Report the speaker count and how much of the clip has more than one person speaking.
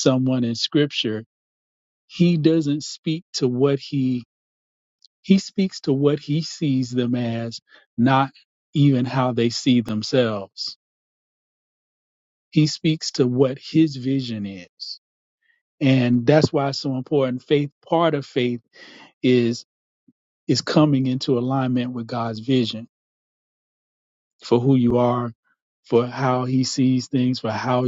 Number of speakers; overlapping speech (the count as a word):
one, no overlap